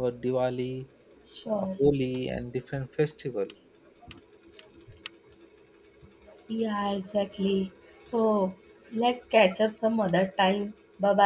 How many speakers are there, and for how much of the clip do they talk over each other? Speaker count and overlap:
two, about 3%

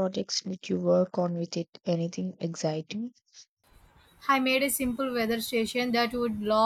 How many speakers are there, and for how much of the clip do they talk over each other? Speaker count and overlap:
two, no overlap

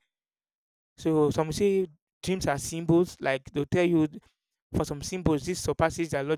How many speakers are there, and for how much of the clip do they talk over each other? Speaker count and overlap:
one, no overlap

